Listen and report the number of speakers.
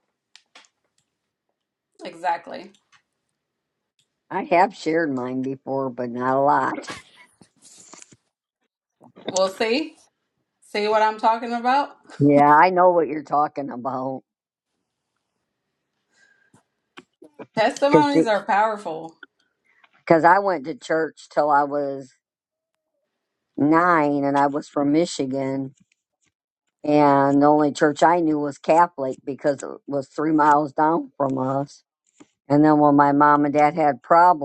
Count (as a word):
two